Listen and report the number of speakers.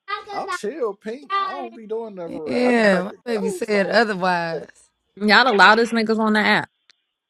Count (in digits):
3